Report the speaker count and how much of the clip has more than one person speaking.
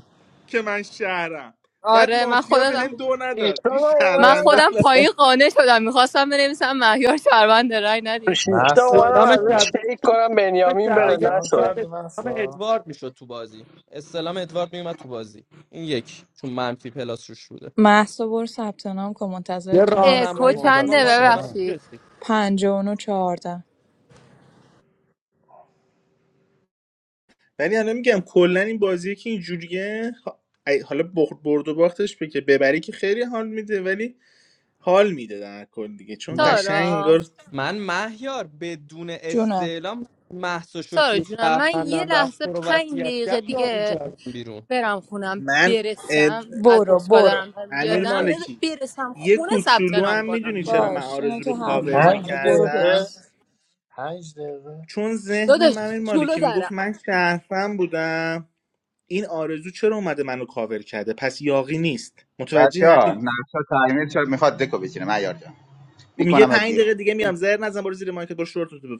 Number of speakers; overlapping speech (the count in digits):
7, about 30%